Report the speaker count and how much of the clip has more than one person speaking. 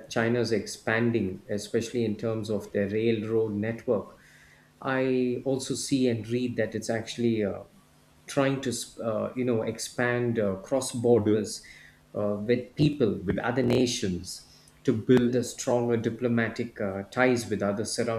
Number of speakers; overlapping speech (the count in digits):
1, no overlap